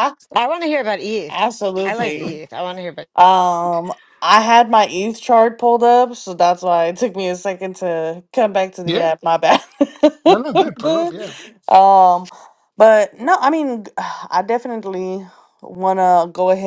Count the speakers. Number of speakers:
three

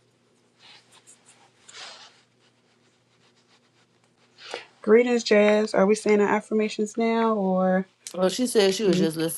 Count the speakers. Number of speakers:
two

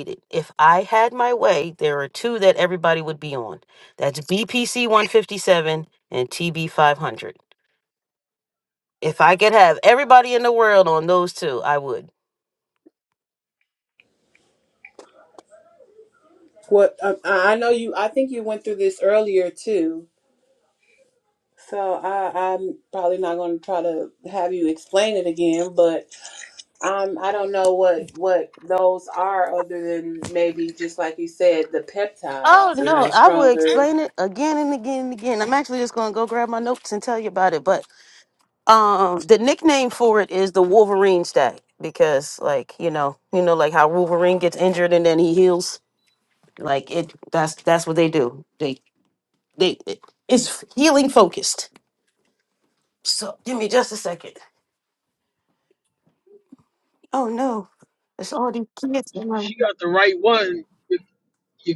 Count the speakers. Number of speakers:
three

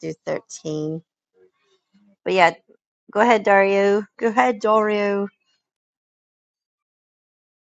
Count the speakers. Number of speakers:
one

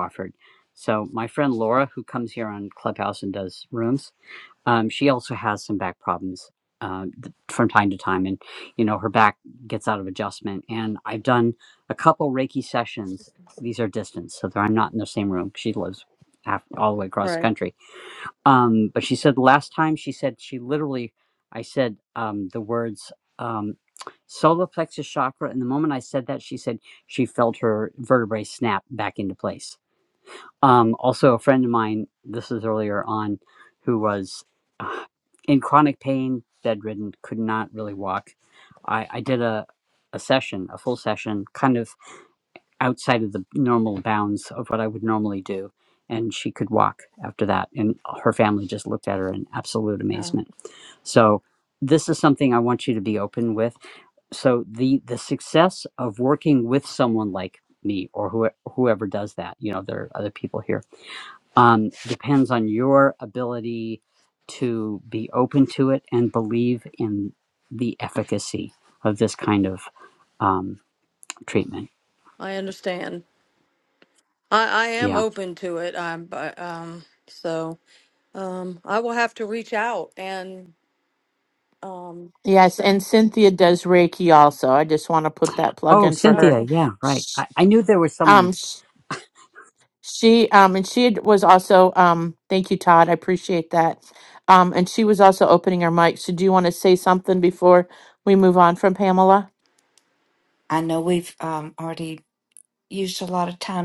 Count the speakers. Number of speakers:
four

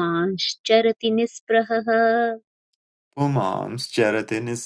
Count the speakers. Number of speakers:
two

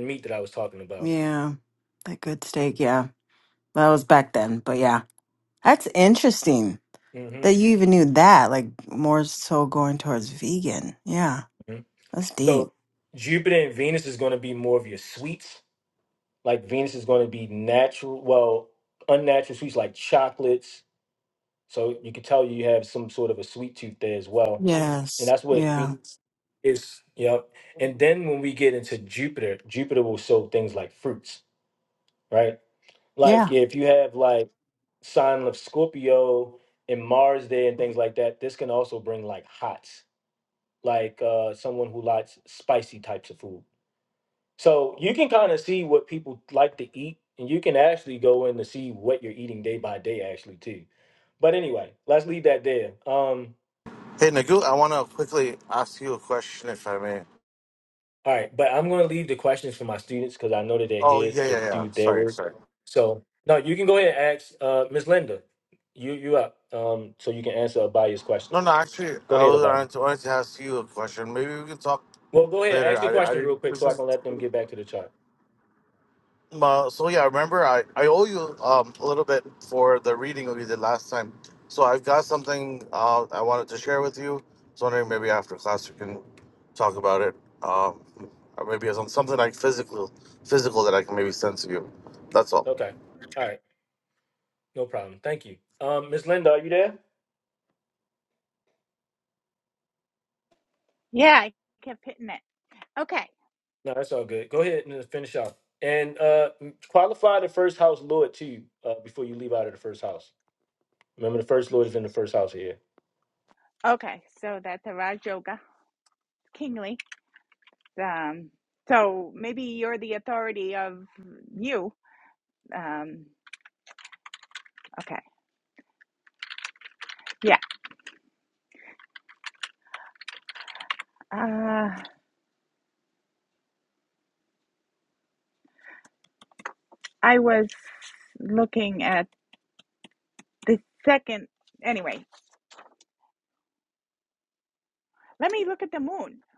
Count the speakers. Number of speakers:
four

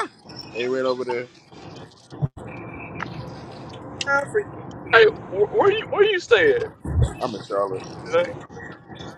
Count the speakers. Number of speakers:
three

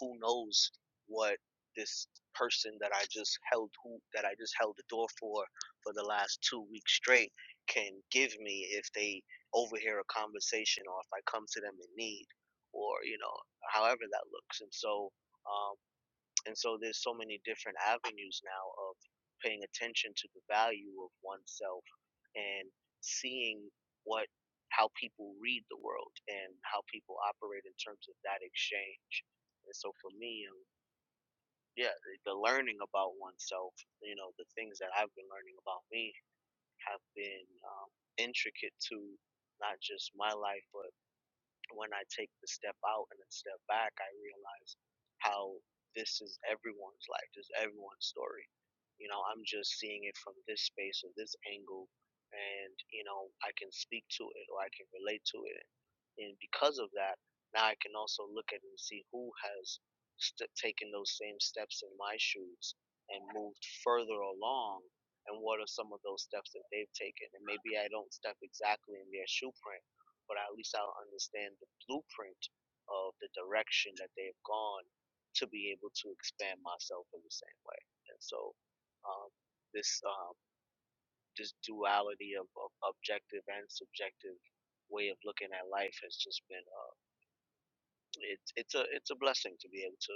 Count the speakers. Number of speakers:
one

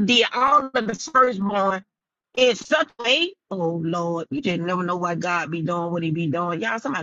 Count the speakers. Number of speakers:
one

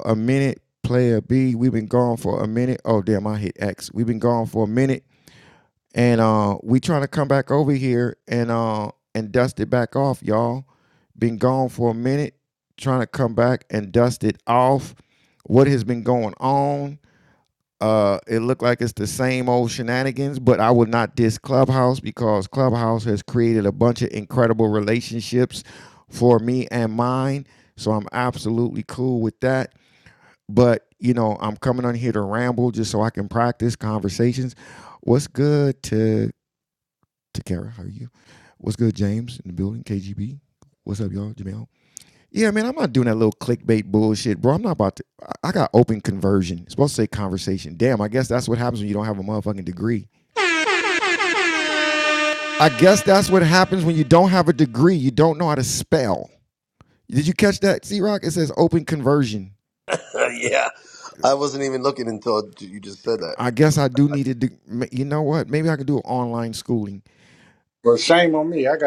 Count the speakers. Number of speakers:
three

